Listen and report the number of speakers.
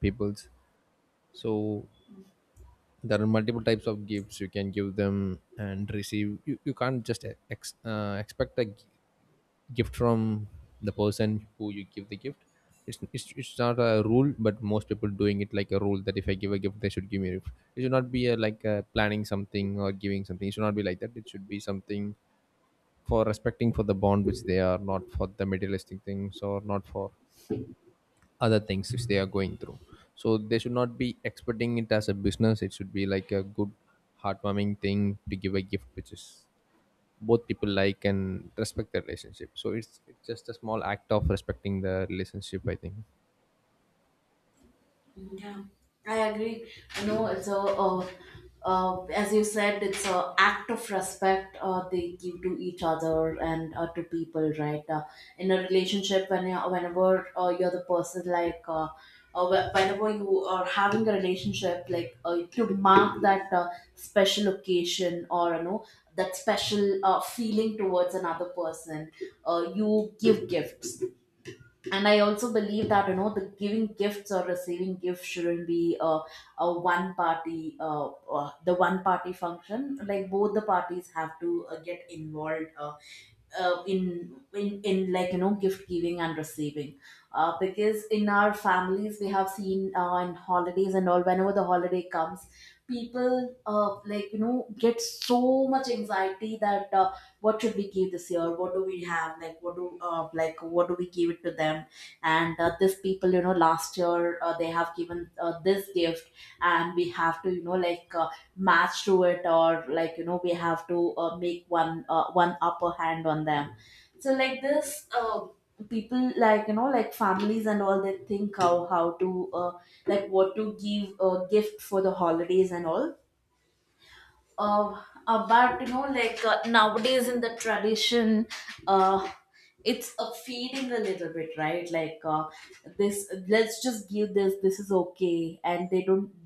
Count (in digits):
2